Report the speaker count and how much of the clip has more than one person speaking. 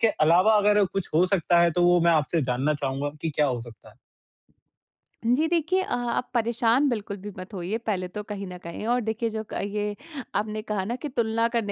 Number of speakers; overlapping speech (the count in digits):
2, no overlap